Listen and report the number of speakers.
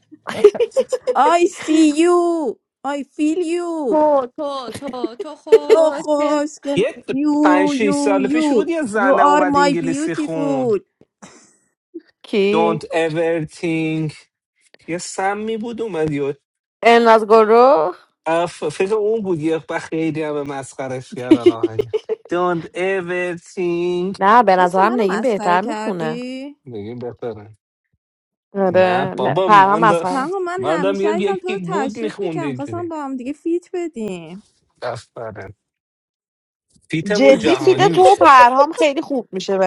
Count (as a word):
four